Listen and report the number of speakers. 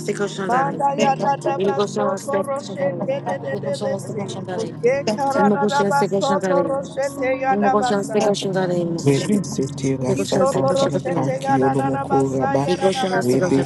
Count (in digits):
3